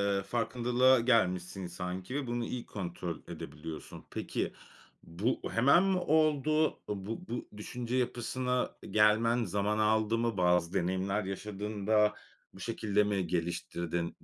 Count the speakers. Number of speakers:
1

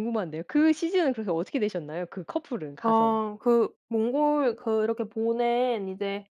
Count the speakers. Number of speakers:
2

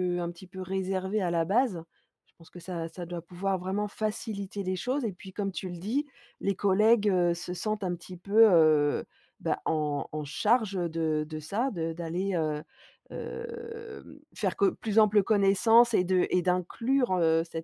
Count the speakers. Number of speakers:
1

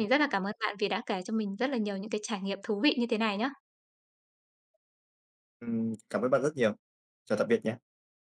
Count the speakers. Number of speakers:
2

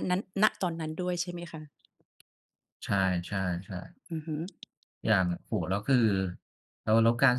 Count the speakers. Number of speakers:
2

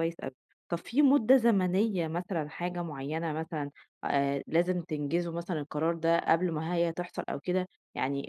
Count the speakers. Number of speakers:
1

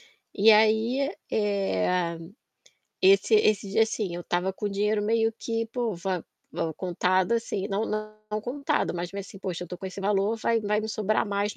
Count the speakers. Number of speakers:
1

